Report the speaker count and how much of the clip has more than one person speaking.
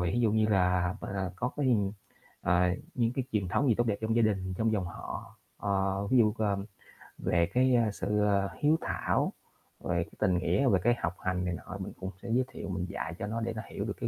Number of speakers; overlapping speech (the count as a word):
one, no overlap